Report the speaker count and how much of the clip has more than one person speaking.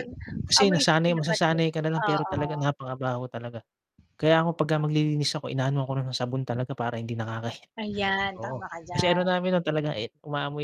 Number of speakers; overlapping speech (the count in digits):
2, about 20%